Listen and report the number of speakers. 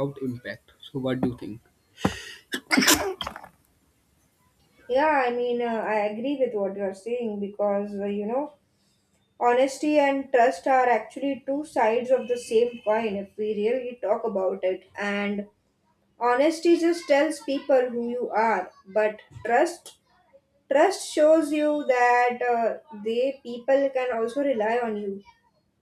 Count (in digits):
2